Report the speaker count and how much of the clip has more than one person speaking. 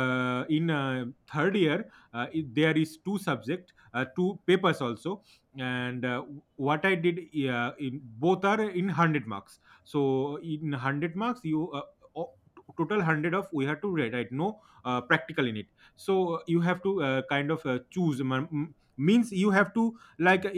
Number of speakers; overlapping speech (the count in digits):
1, no overlap